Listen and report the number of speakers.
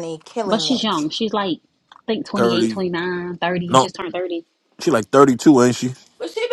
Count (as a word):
three